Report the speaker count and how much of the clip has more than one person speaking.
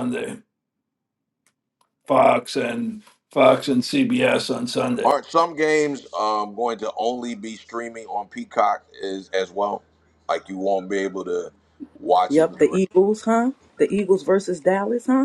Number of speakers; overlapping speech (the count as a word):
three, about 3%